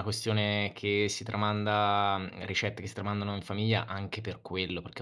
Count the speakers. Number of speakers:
1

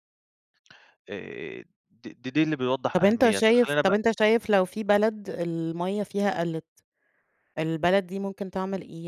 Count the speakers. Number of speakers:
2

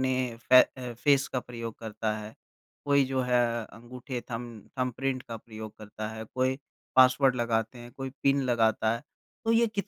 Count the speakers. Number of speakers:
1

